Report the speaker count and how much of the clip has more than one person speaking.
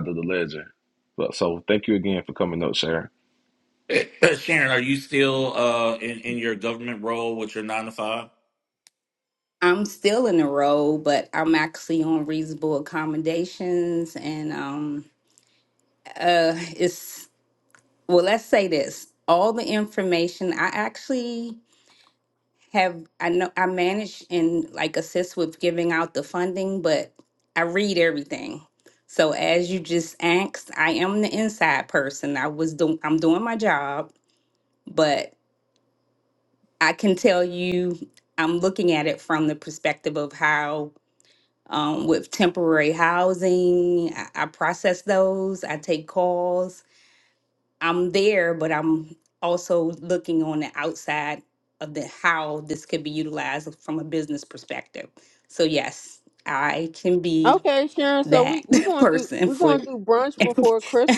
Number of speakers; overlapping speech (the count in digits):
4, about 2%